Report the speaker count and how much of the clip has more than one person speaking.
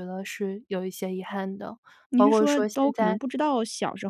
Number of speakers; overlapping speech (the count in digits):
2, about 24%